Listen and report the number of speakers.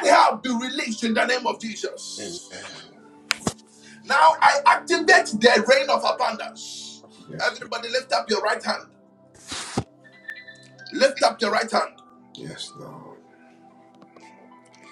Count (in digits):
2